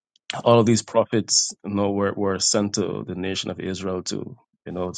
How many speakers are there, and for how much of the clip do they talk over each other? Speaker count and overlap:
one, no overlap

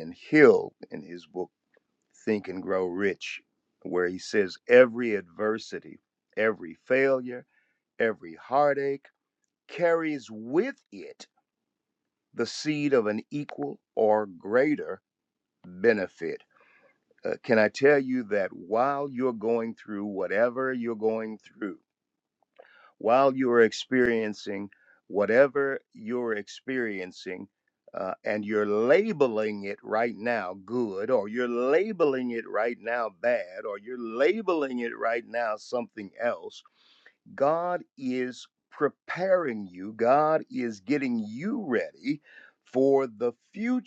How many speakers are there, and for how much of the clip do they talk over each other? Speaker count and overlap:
one, no overlap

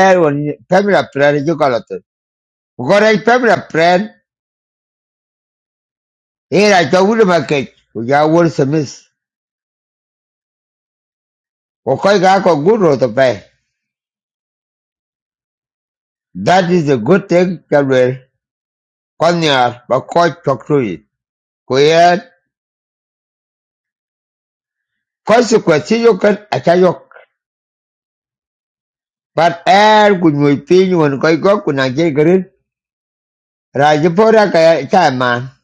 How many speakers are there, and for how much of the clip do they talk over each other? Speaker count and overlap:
one, no overlap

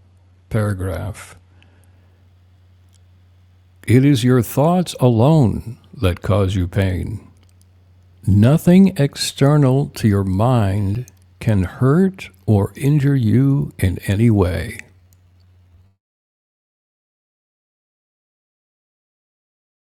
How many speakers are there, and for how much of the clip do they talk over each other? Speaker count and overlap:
one, no overlap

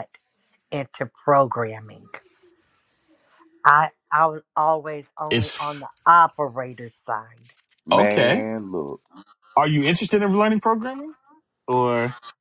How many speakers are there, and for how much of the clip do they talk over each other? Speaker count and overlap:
three, about 8%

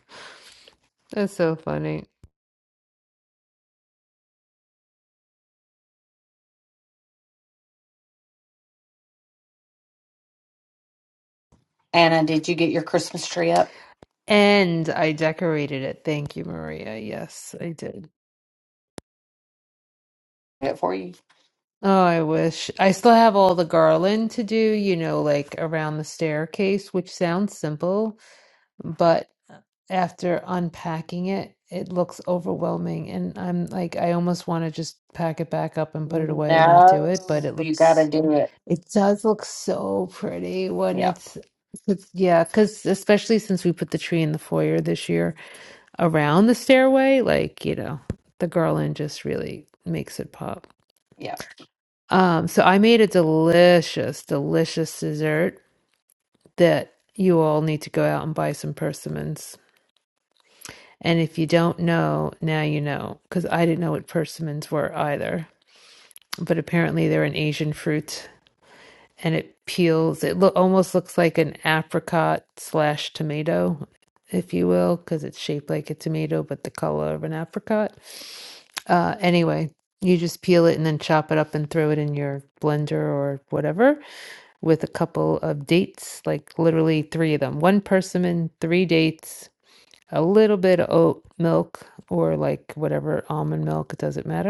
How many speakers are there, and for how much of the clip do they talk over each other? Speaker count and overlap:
two, about 1%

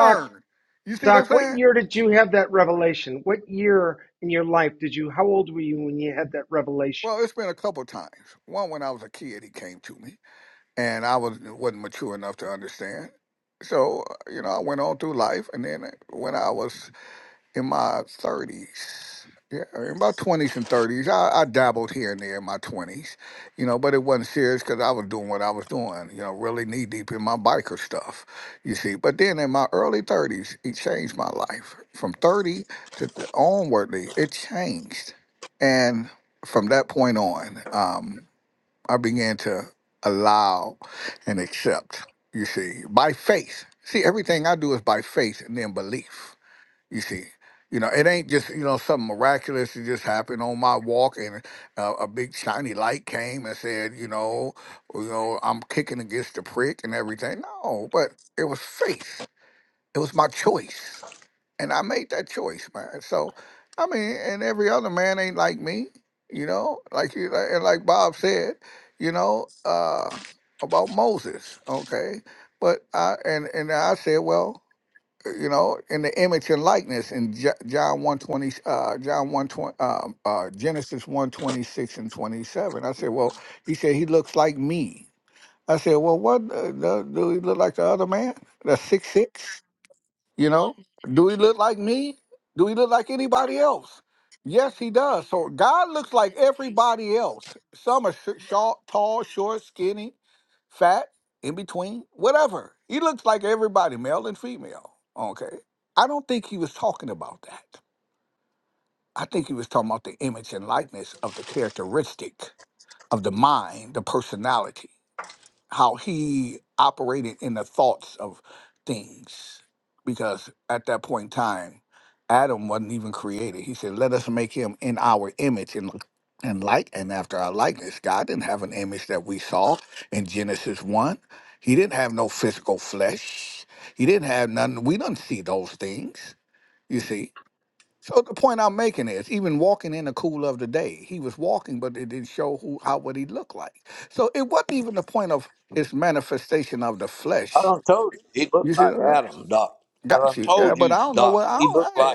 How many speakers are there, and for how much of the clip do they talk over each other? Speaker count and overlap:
three, about 2%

